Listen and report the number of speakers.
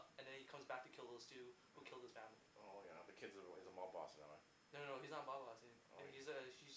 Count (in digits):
2